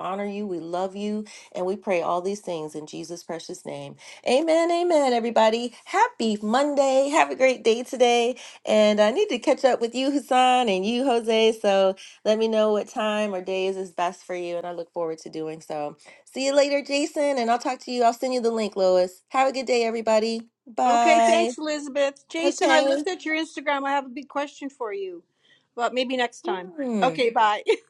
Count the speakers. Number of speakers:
2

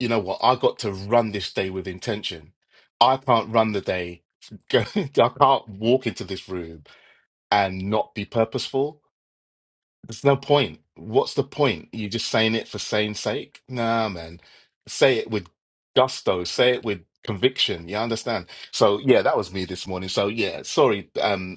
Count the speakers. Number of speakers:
1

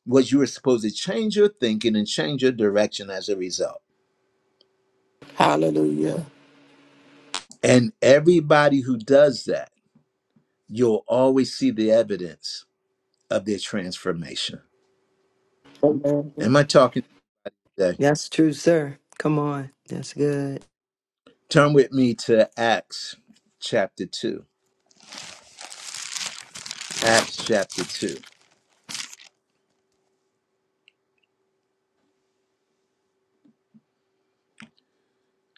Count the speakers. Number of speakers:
3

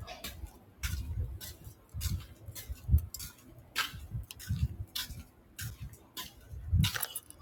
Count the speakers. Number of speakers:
0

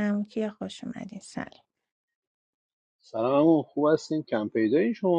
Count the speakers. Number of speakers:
2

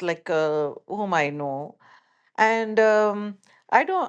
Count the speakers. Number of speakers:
1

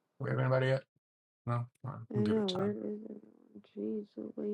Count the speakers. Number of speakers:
2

